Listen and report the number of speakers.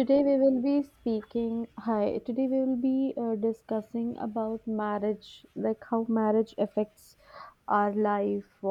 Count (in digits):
1